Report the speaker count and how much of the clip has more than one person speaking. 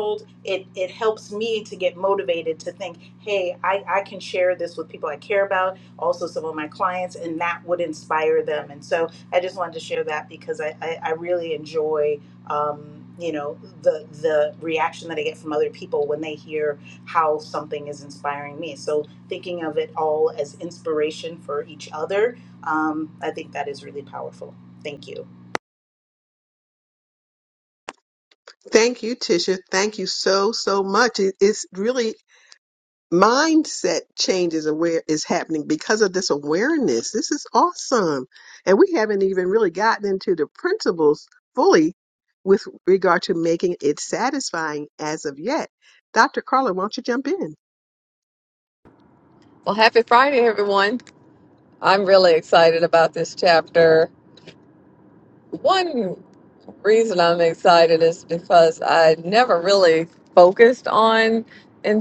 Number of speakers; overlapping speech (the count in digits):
3, no overlap